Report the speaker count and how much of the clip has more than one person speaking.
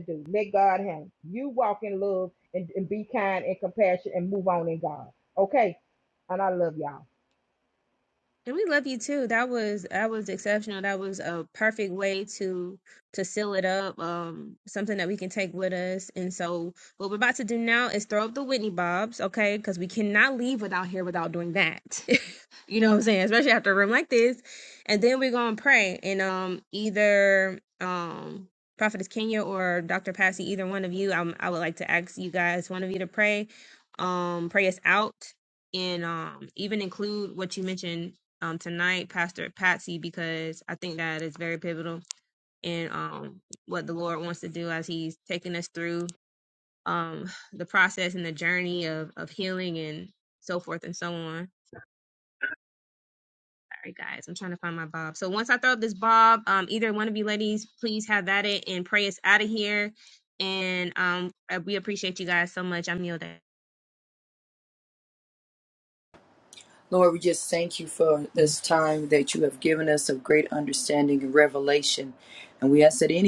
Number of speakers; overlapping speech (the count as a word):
three, no overlap